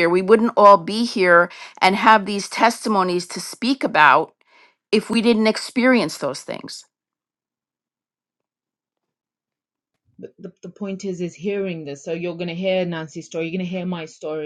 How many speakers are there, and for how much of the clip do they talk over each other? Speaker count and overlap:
two, no overlap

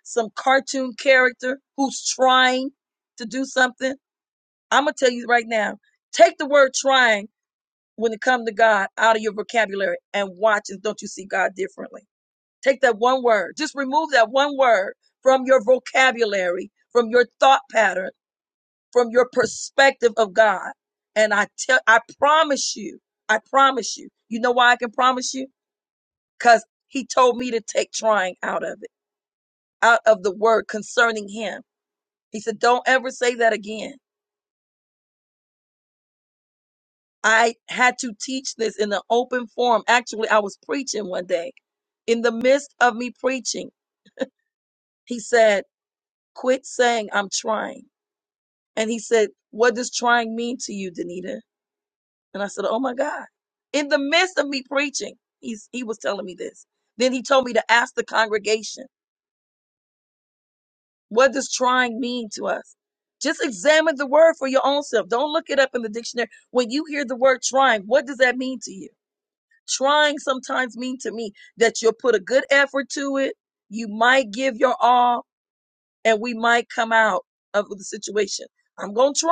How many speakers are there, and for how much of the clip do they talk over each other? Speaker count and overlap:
one, no overlap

